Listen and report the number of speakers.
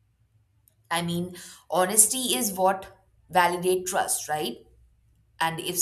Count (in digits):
1